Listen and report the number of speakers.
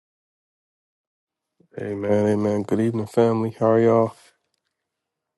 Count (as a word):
one